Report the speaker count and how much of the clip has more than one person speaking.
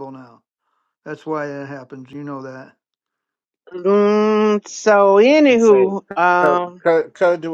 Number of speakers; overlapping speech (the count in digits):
3, about 10%